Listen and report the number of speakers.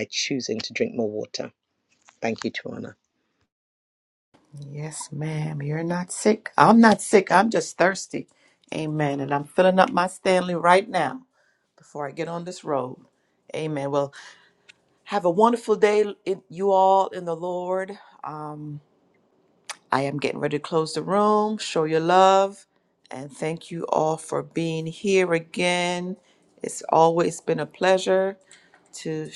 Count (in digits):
2